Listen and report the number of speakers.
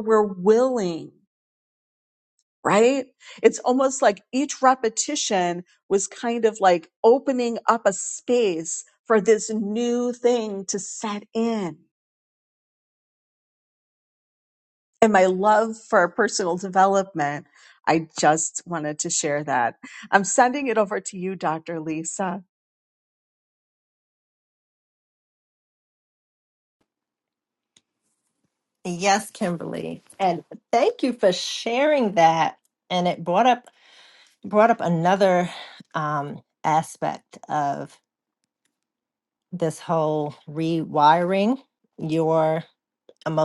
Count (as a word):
two